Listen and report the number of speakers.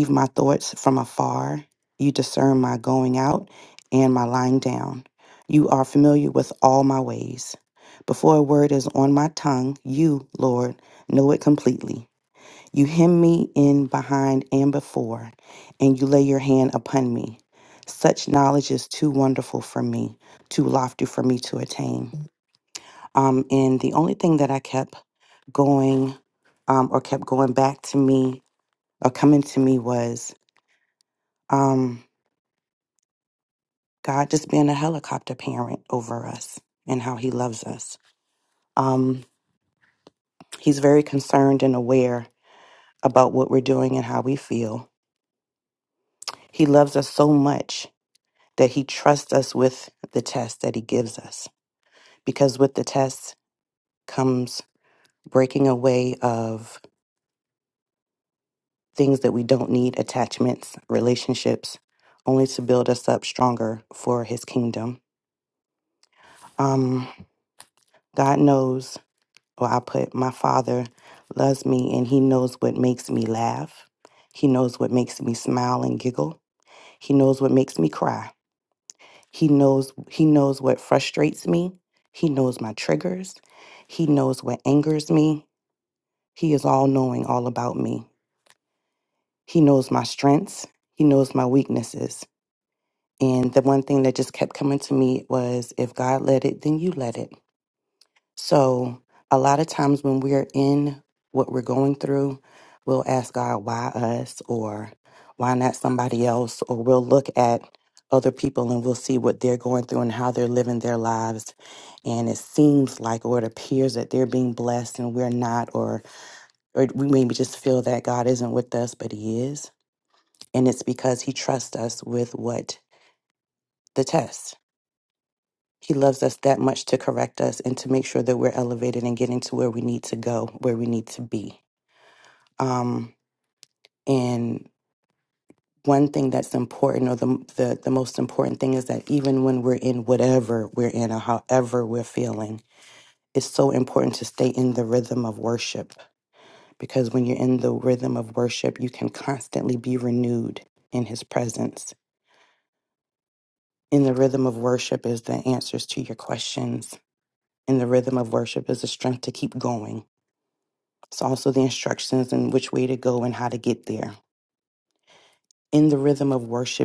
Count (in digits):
1